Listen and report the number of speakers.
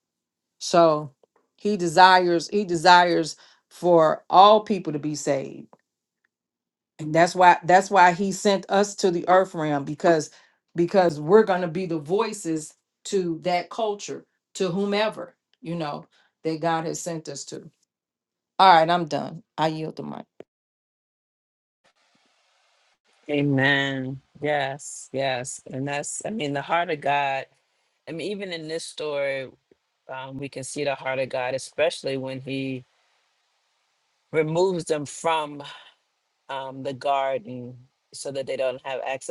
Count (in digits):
2